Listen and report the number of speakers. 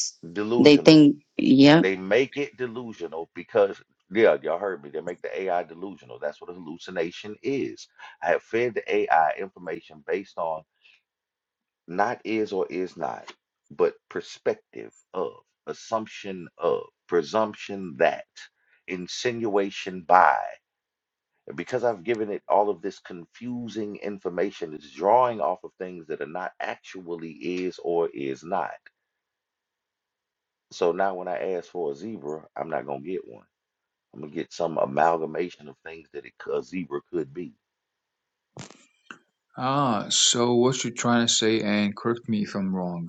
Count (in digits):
3